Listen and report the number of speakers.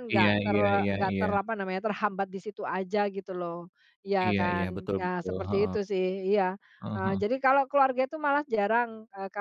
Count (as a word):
two